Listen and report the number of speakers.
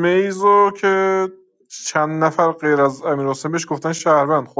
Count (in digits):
1